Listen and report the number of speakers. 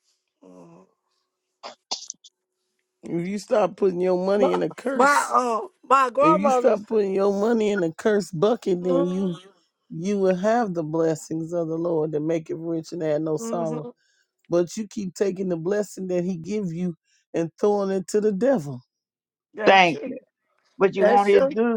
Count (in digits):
3